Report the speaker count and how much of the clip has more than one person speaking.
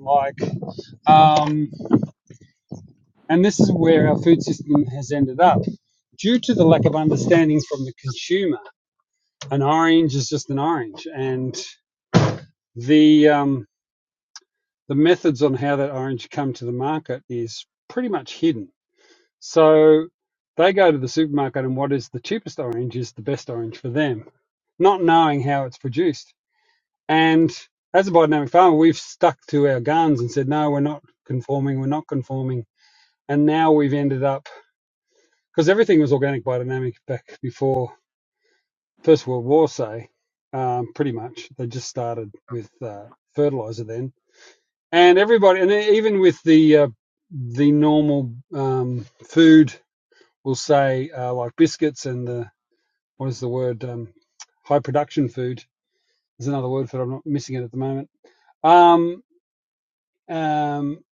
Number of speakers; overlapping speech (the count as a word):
one, no overlap